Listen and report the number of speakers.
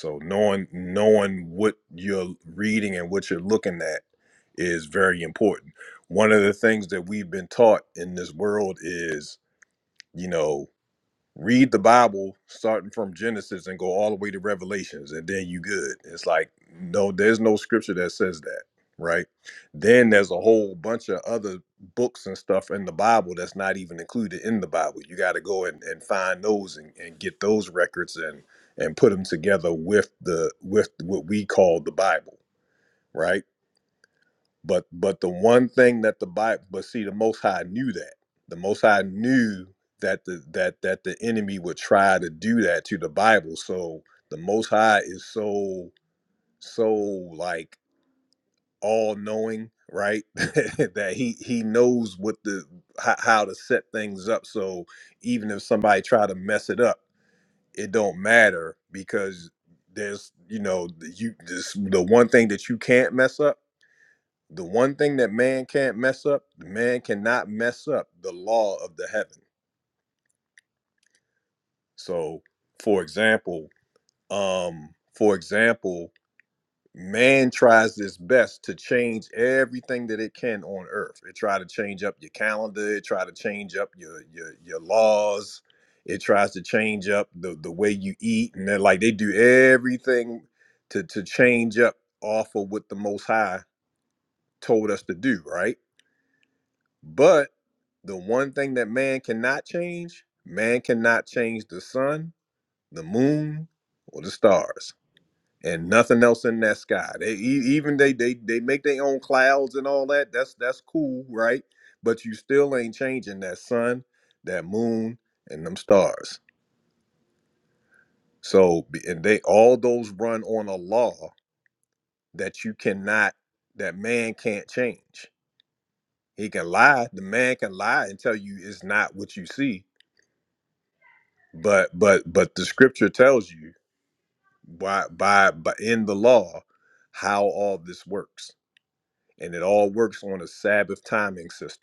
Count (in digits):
1